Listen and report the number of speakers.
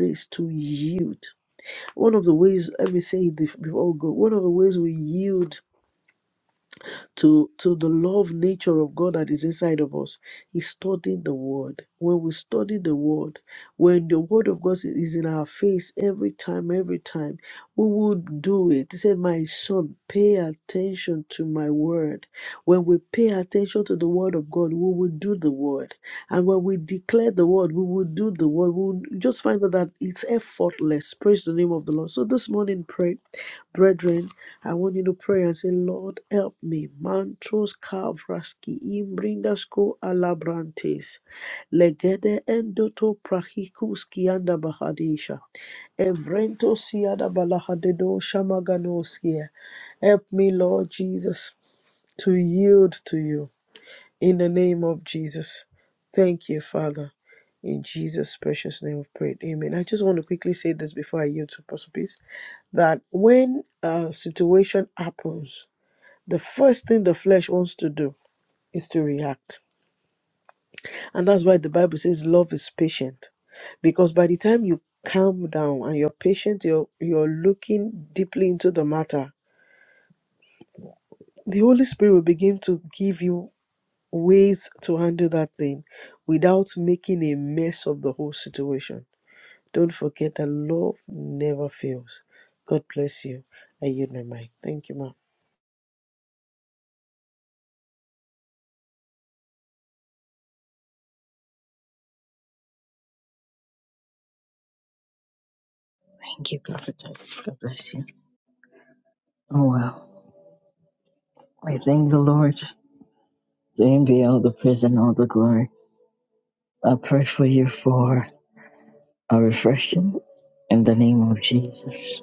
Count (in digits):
2